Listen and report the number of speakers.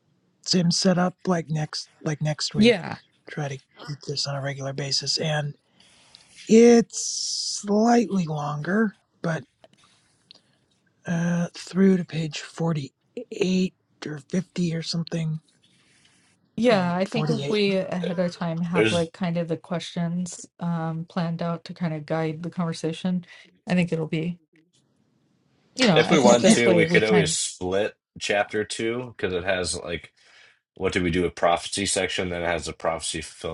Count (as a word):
three